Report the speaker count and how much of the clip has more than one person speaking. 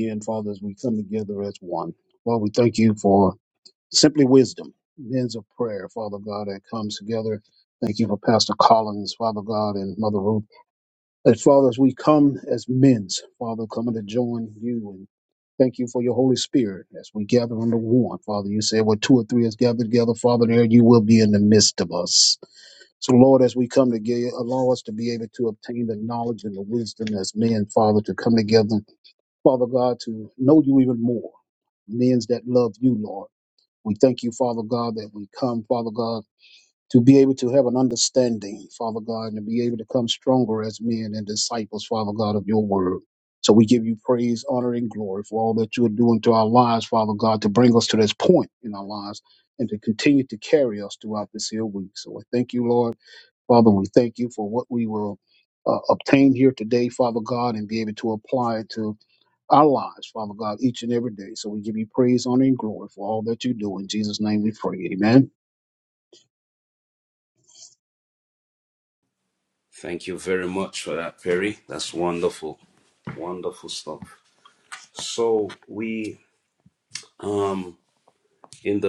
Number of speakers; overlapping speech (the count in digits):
2, no overlap